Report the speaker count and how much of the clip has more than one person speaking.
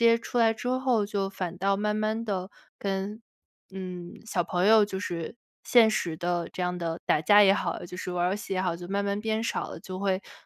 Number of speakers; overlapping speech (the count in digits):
1, no overlap